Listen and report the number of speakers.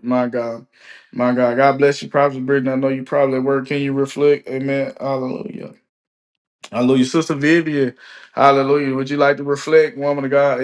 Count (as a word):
one